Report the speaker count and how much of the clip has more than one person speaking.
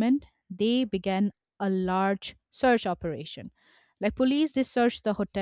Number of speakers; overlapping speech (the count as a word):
one, no overlap